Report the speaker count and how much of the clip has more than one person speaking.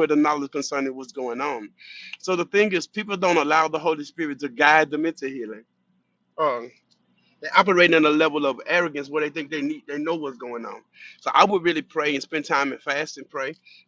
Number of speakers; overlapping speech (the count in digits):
1, no overlap